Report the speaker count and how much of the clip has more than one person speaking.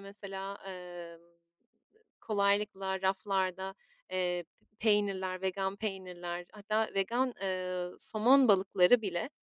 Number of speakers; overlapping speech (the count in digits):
1, no overlap